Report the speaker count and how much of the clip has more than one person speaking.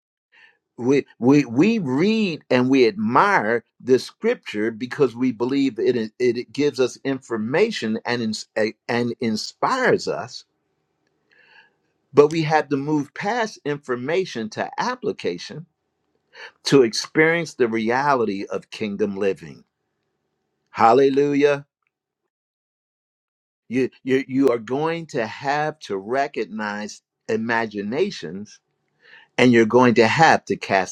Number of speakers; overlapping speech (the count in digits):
1, no overlap